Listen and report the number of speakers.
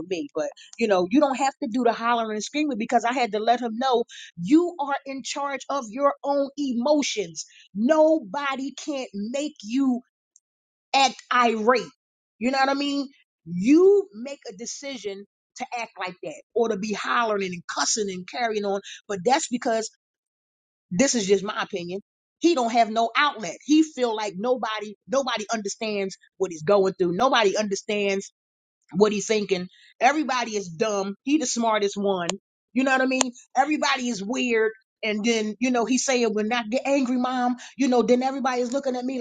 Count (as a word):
one